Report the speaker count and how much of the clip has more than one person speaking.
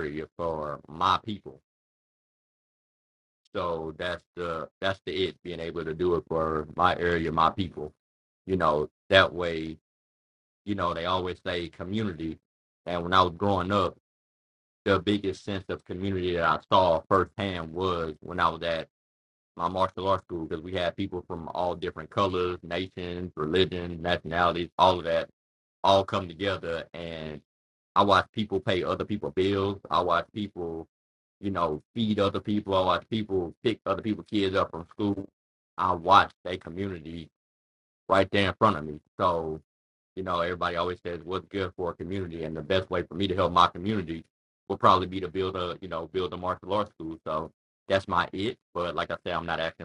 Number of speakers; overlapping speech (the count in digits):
1, no overlap